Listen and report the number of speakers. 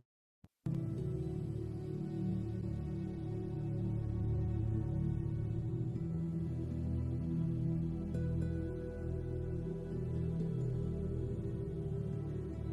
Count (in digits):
0